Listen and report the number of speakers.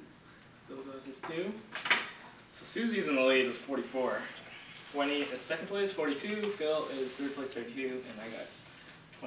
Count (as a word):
one